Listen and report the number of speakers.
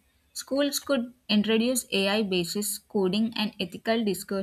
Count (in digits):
1